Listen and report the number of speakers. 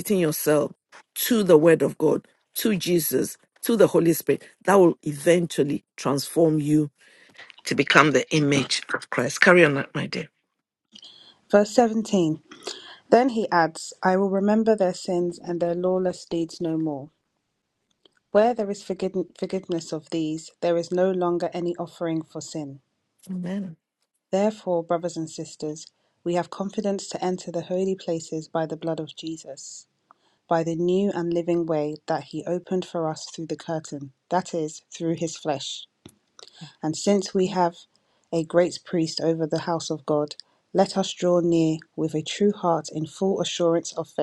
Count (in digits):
2